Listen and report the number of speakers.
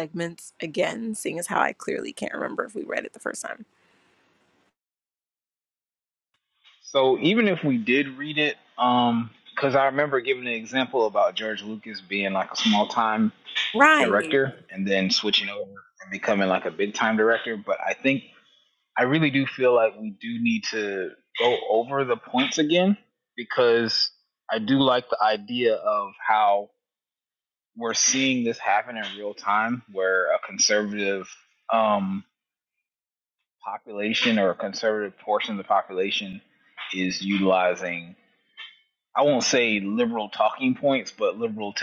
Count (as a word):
two